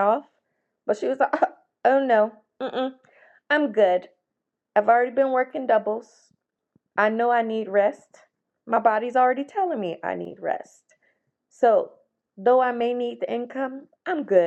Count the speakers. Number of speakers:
1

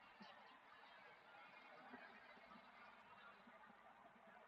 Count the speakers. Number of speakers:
0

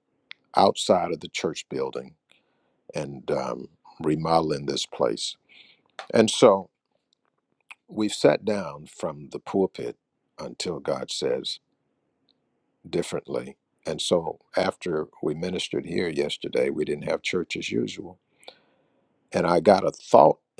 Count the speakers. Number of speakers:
1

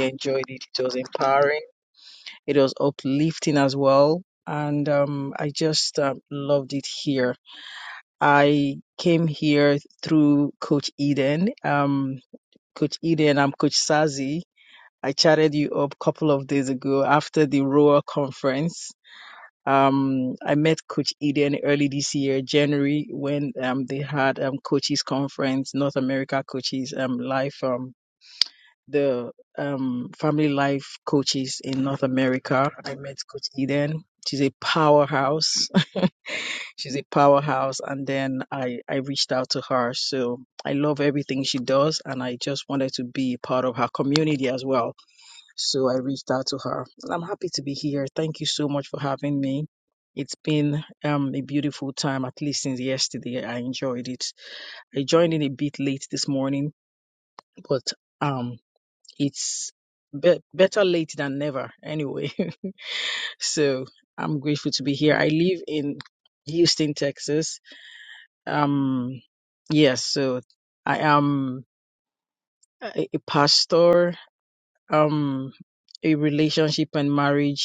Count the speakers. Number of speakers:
1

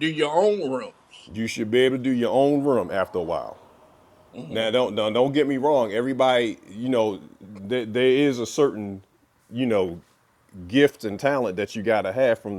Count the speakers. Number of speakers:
2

